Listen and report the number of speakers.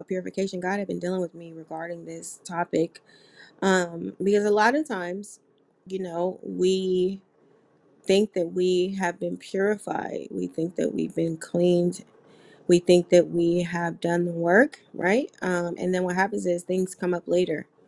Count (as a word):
one